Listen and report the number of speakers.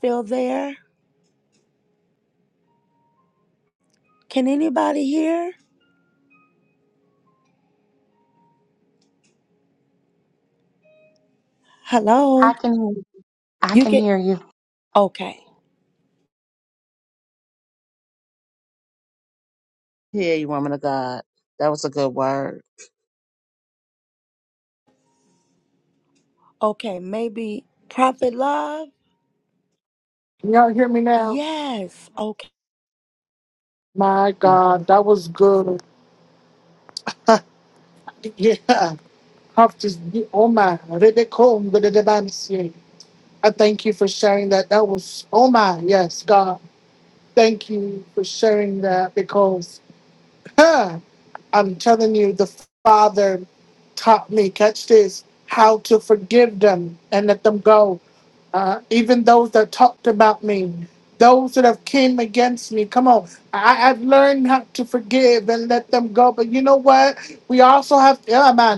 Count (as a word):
four